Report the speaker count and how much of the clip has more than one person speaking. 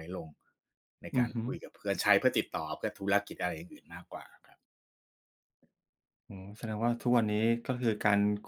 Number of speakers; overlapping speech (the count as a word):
two, about 4%